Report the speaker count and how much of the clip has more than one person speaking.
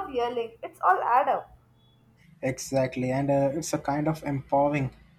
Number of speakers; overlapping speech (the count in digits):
2, no overlap